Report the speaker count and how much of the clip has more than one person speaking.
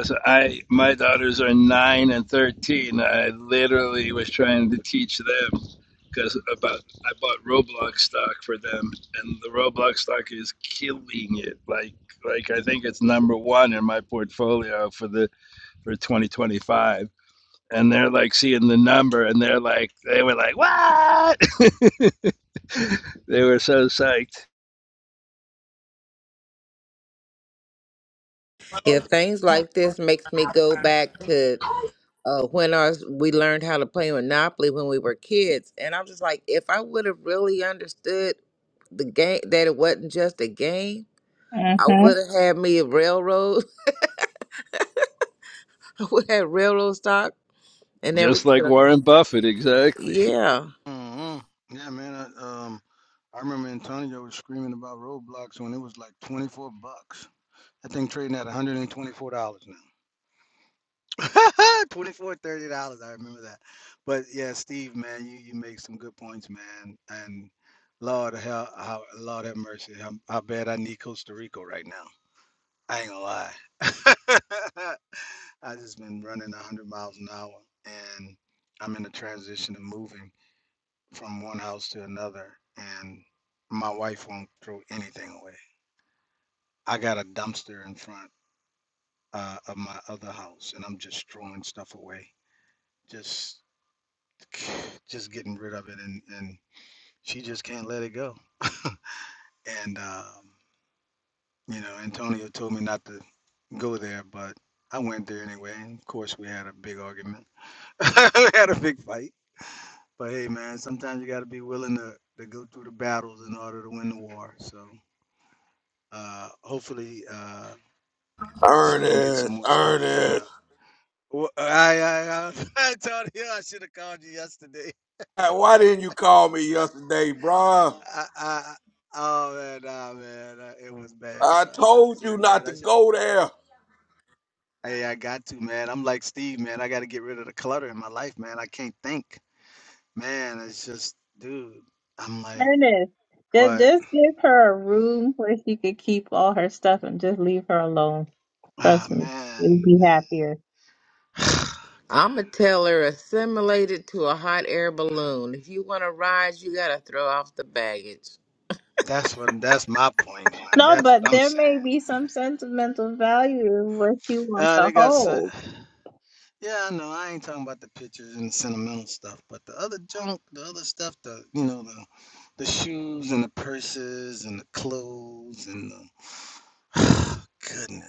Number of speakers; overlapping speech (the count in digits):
5, about 4%